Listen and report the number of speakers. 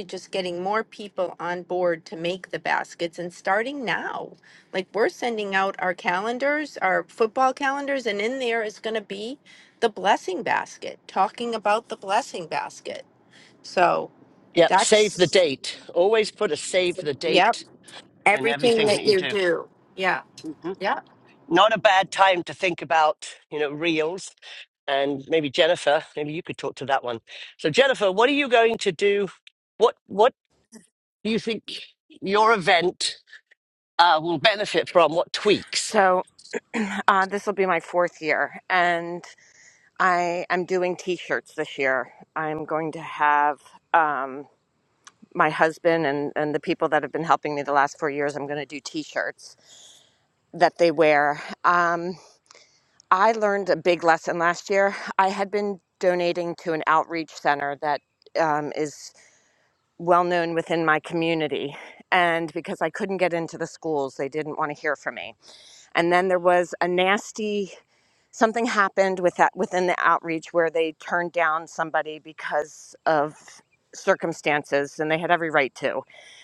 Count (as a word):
three